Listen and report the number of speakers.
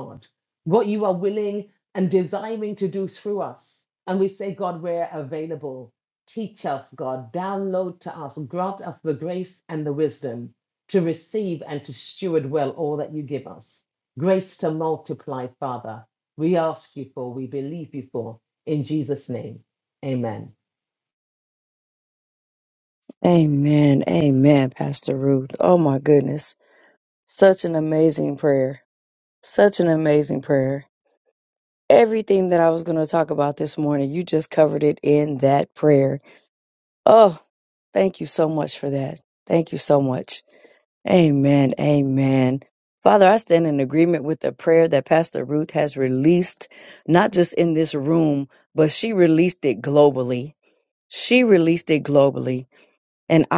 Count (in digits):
2